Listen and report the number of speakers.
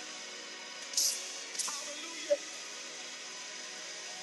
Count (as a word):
zero